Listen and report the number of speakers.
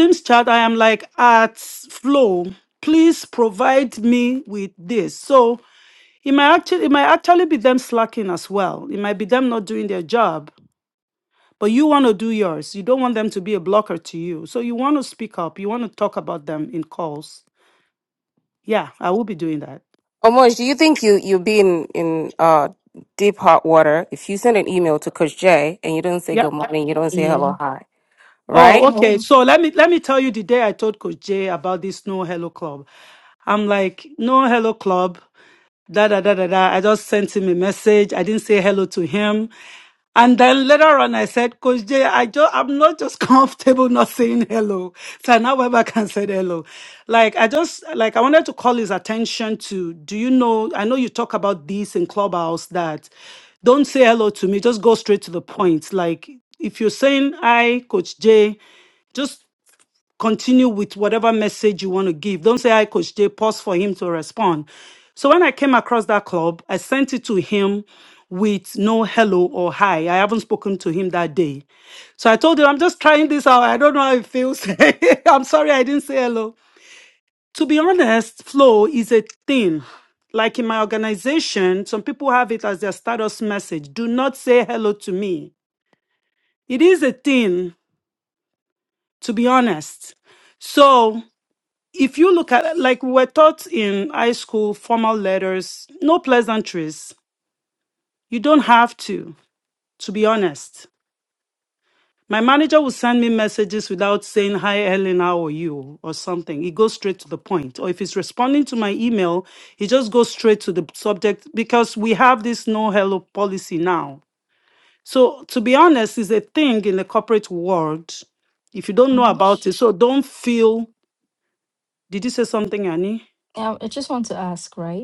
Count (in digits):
3